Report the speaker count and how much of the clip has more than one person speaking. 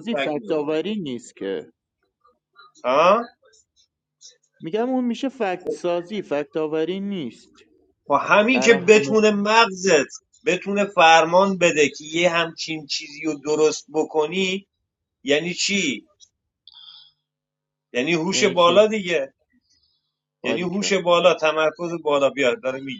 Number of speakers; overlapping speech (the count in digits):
2, about 10%